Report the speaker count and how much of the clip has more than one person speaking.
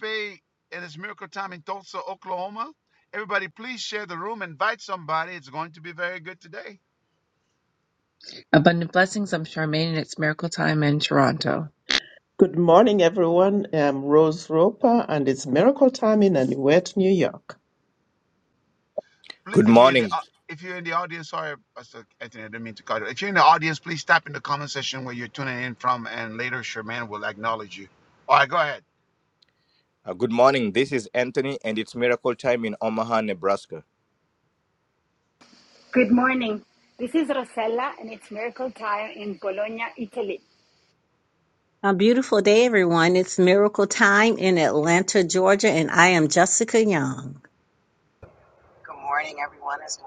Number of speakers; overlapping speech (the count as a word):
seven, about 1%